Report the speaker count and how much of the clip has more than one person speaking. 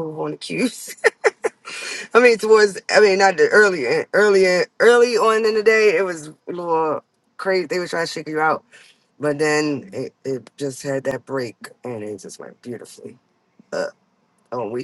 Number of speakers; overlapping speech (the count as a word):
one, no overlap